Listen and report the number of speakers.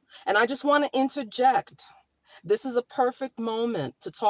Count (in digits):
1